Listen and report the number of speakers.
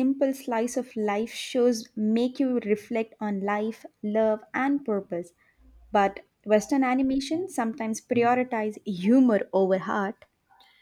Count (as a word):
one